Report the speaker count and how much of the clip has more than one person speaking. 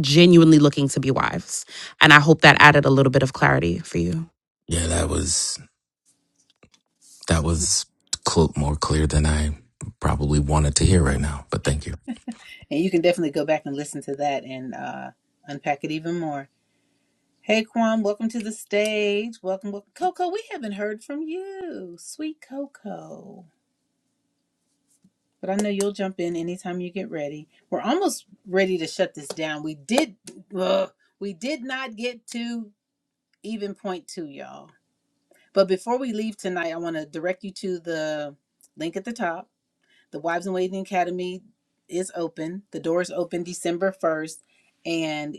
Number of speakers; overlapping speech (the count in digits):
3, no overlap